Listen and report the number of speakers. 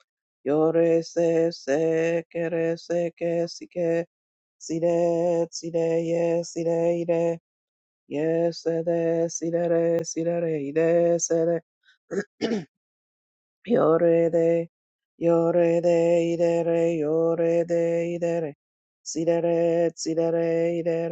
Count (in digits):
1